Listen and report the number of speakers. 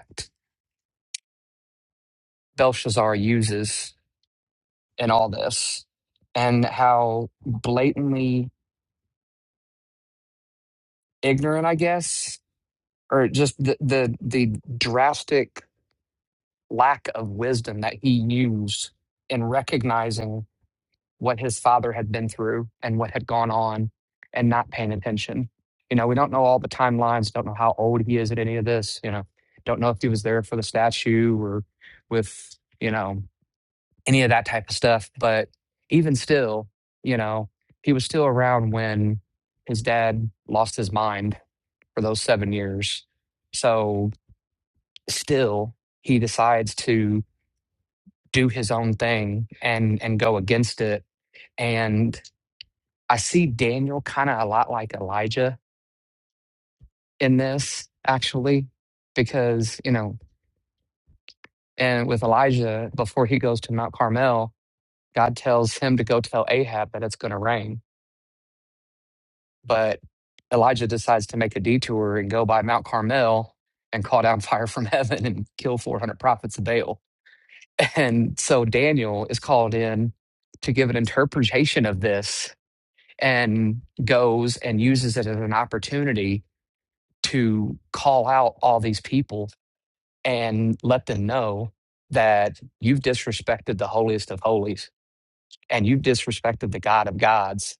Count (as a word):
one